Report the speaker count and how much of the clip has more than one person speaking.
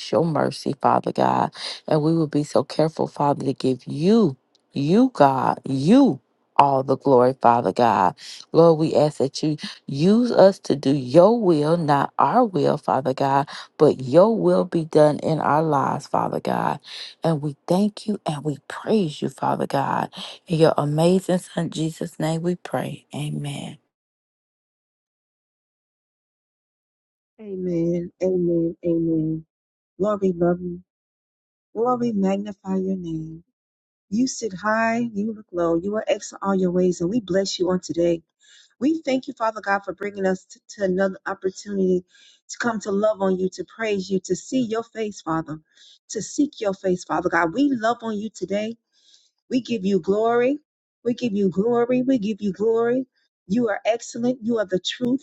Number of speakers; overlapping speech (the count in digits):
2, no overlap